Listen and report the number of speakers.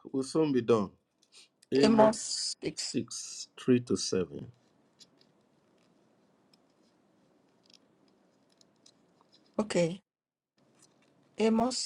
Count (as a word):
two